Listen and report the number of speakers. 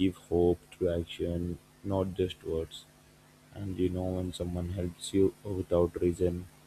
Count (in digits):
1